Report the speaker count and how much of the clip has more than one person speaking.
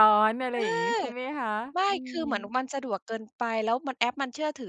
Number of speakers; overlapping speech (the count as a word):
two, about 15%